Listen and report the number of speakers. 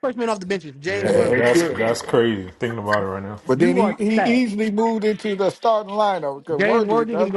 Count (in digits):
3